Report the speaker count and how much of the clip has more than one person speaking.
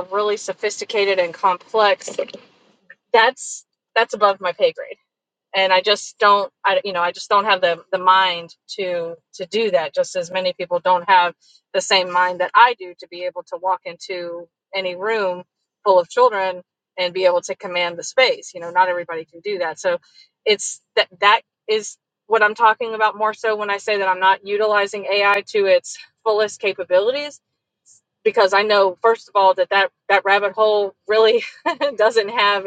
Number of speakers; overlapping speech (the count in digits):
1, no overlap